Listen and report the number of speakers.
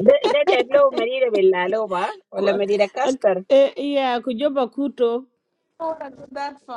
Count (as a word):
three